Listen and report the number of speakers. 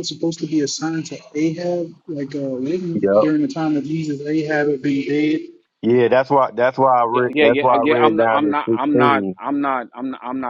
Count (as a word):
three